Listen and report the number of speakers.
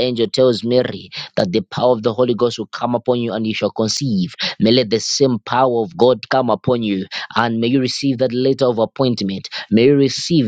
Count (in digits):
1